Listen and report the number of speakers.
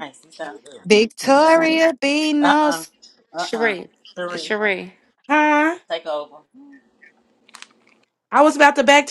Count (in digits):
4